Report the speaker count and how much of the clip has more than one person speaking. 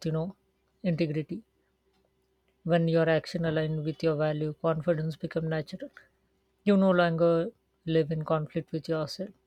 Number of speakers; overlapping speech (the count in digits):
1, no overlap